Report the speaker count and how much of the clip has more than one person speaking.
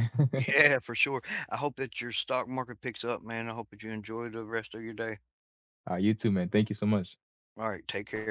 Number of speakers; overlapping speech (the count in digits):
2, no overlap